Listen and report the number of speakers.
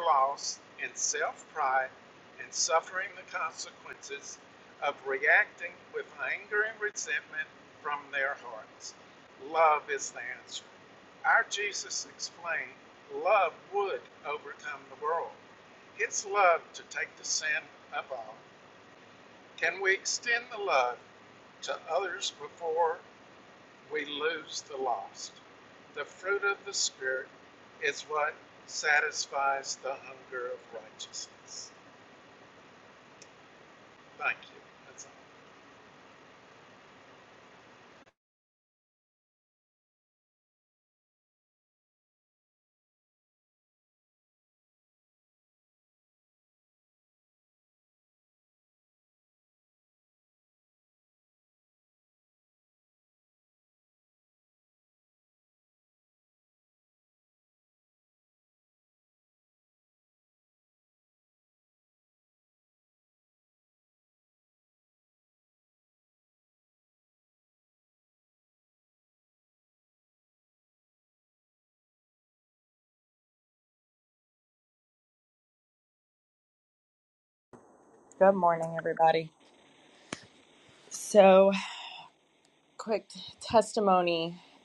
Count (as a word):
two